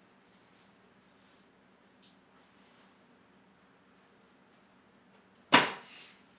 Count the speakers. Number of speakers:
0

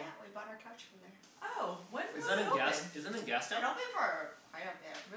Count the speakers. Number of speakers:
3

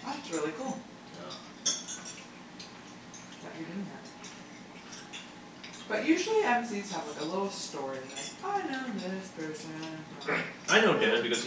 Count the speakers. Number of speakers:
2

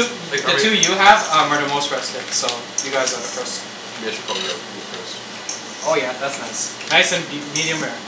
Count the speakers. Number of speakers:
2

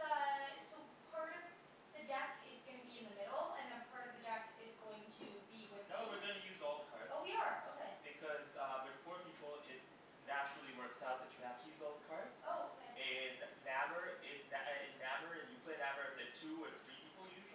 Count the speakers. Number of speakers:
2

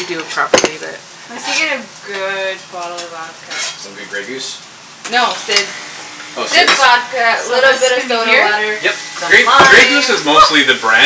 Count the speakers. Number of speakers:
4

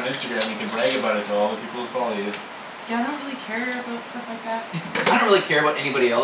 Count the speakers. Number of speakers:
3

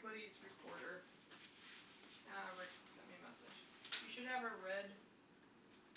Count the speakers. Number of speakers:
1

